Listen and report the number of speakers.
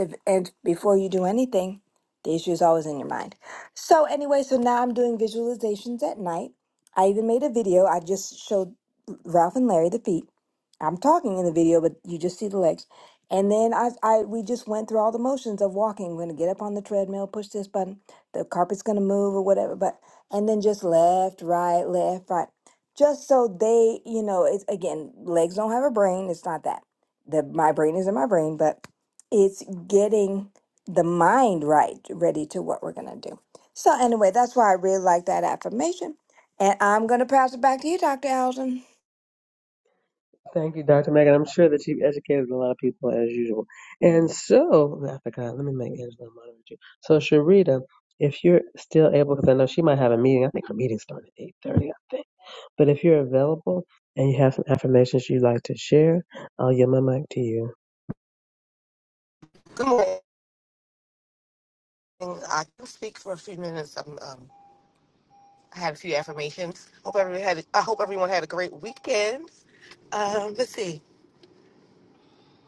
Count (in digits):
3